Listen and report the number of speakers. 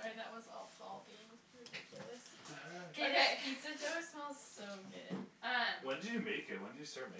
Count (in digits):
3